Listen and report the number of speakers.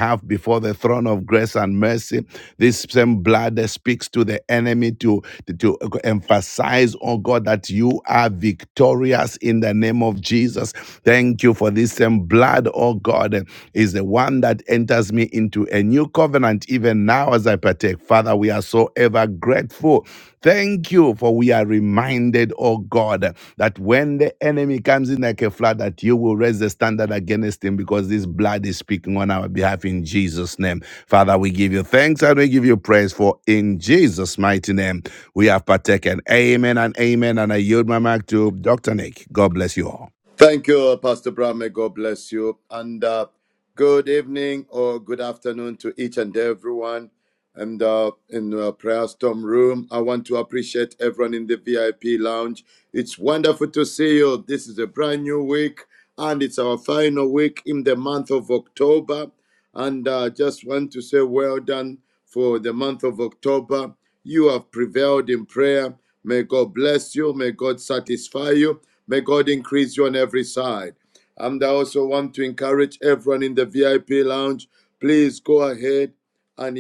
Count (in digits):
2